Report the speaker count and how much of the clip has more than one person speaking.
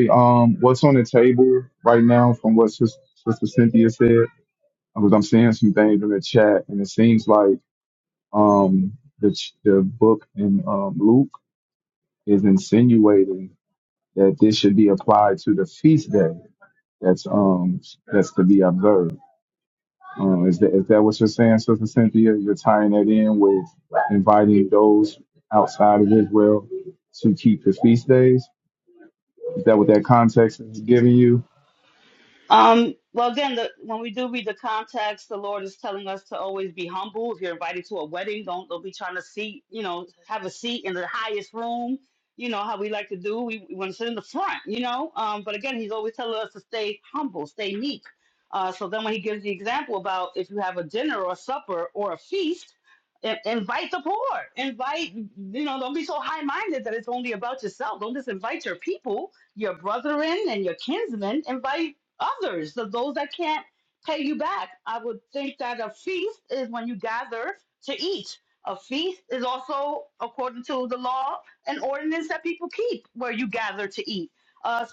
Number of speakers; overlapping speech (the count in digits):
2, no overlap